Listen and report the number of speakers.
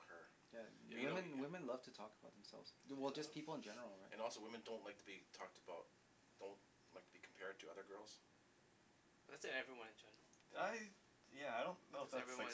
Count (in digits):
4